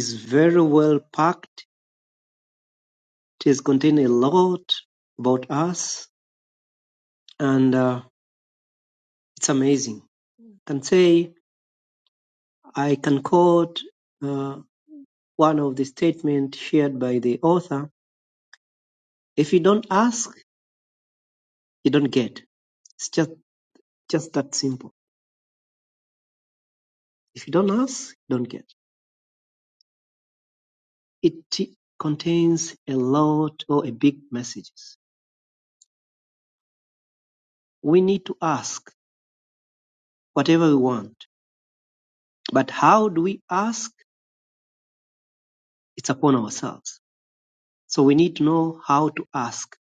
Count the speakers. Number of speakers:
one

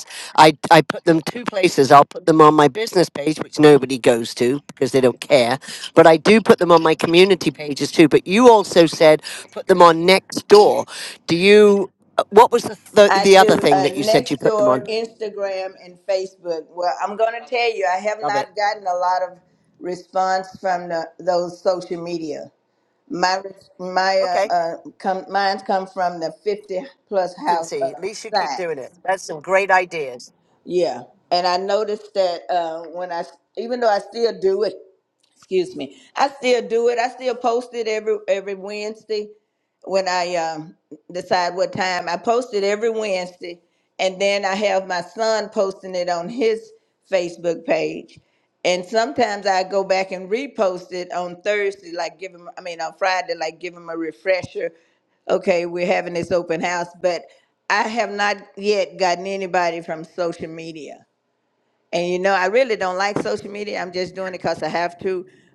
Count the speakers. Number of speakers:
two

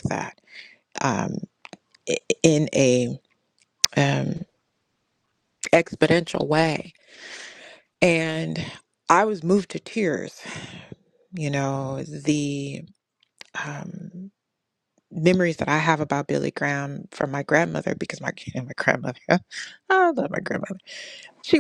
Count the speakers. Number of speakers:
one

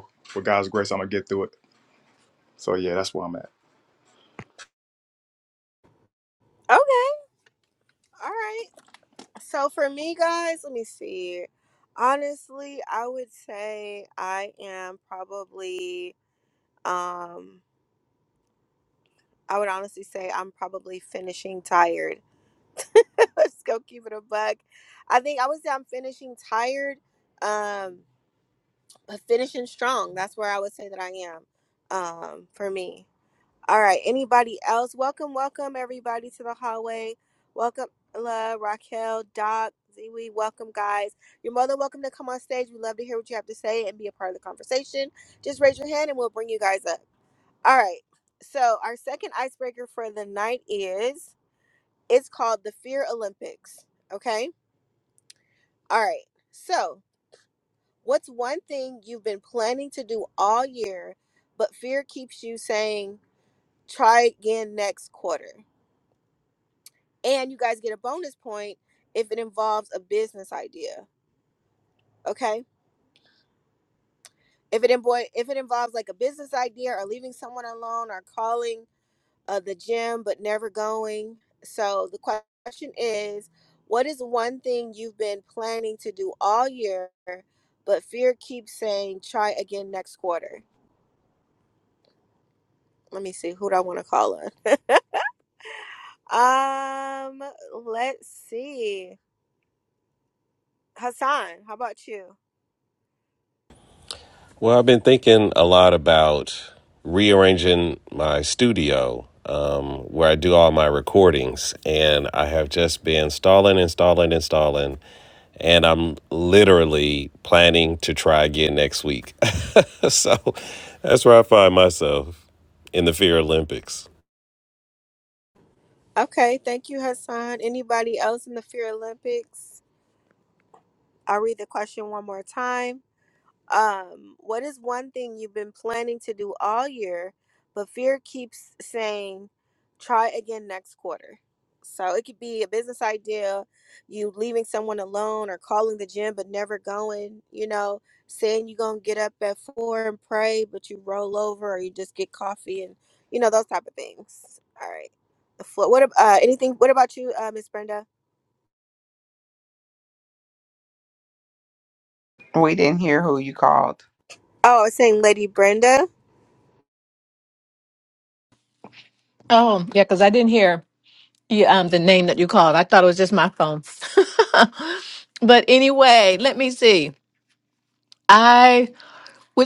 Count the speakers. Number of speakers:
five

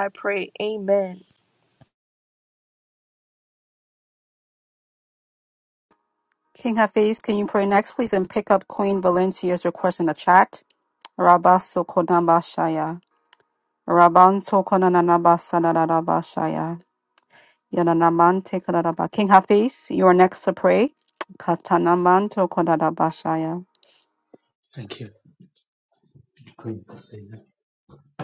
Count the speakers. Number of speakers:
three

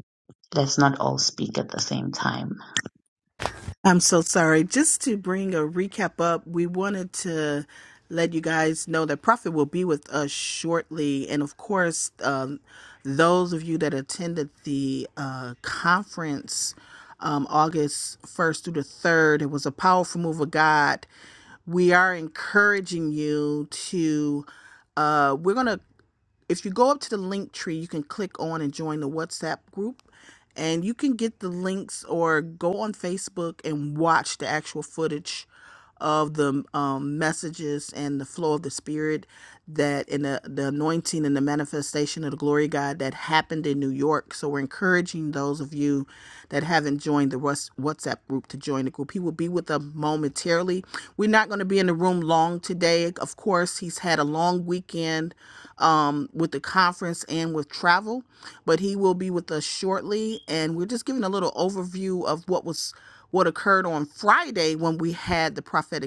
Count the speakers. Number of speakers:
two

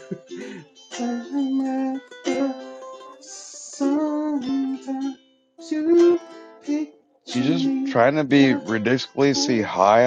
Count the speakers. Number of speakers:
two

